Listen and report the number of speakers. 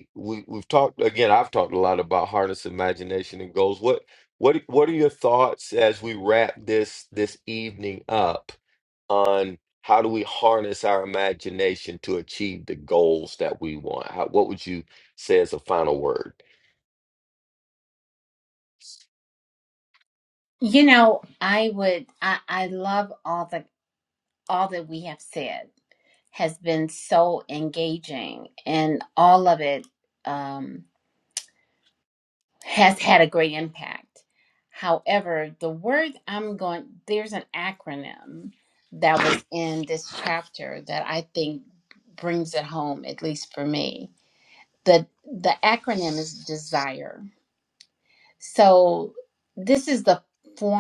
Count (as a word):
two